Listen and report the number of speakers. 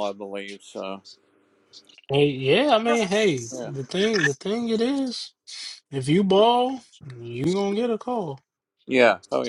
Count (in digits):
2